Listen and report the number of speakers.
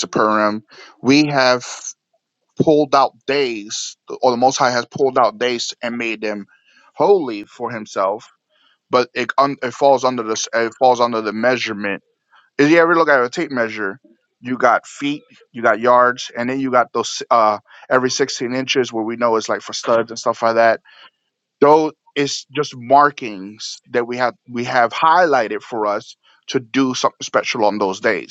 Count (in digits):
1